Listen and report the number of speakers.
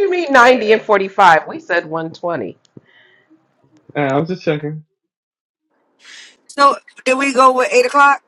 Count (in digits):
3